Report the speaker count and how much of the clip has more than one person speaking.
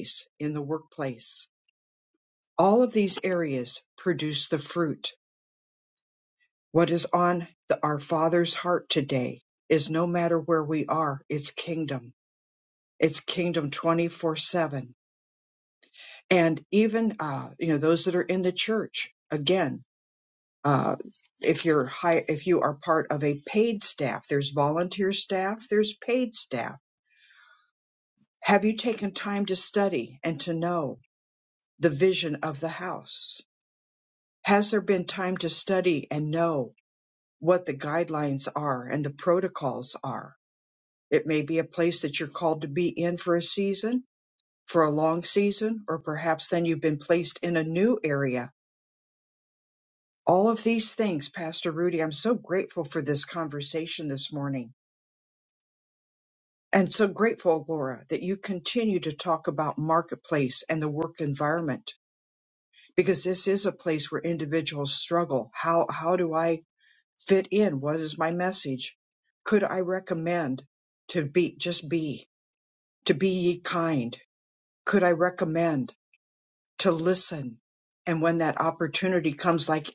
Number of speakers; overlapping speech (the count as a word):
one, no overlap